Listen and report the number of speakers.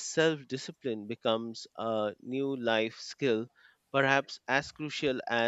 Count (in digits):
1